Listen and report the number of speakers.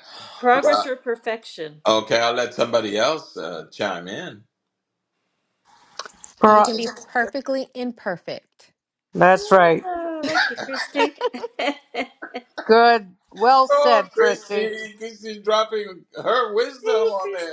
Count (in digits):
4